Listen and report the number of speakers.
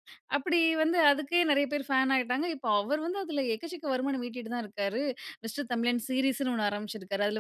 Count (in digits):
1